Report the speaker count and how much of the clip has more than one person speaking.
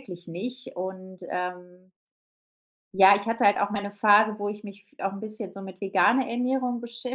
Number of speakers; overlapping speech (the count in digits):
1, no overlap